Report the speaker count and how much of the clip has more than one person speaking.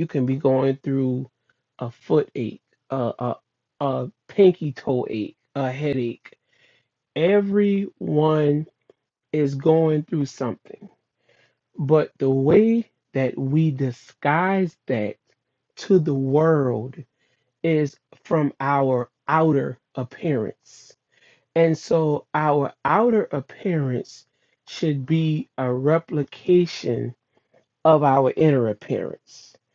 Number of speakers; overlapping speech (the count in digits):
1, no overlap